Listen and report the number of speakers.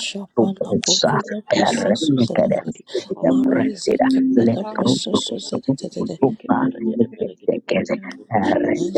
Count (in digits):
3